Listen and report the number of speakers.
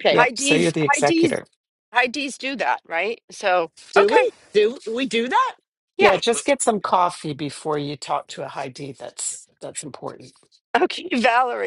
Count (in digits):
3